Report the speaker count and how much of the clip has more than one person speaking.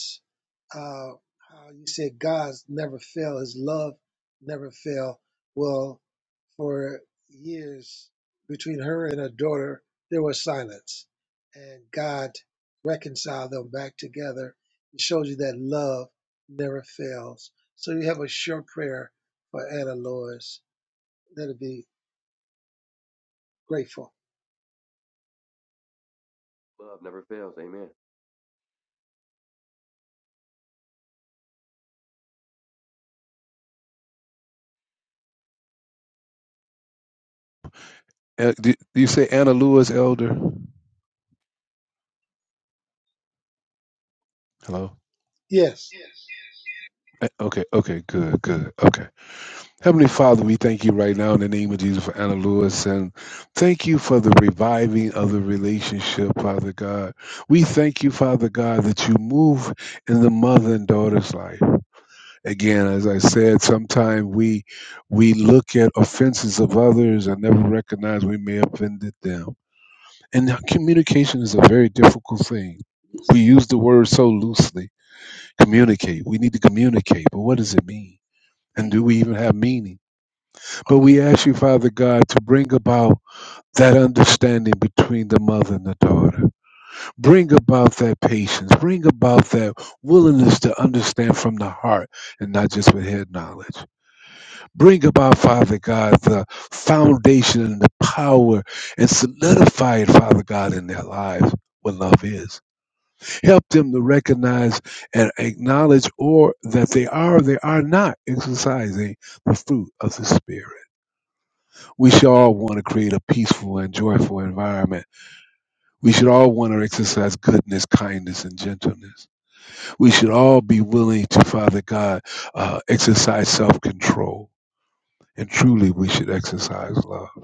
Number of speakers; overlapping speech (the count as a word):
three, under 1%